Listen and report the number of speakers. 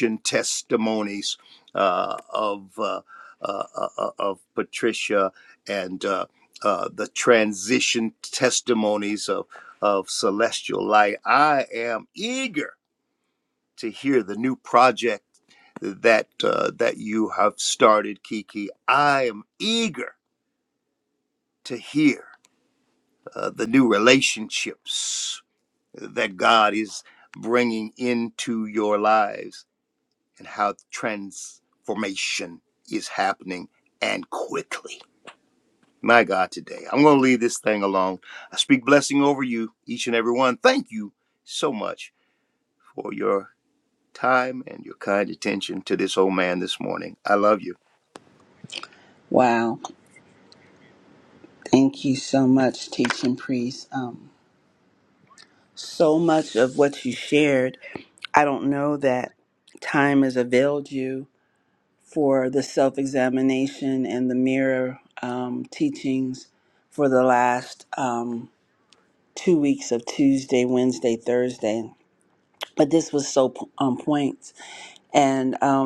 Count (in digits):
2